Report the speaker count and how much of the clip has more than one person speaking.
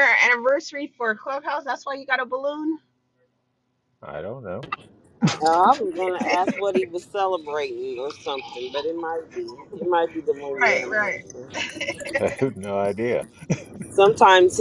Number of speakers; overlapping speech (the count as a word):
three, about 5%